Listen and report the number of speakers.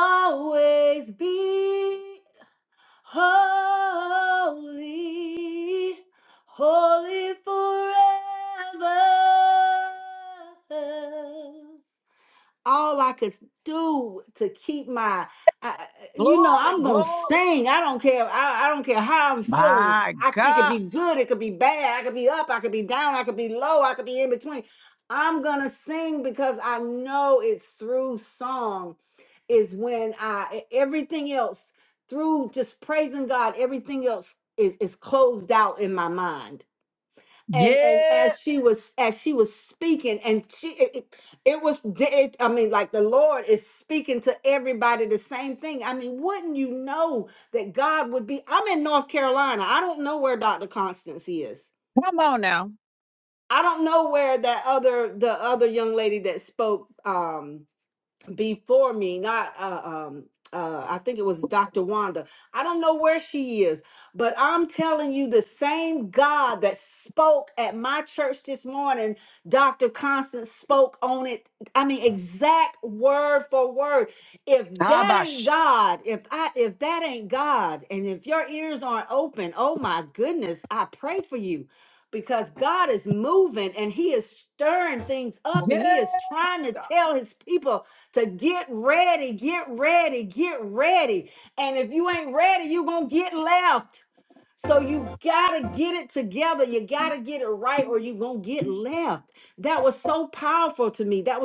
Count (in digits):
2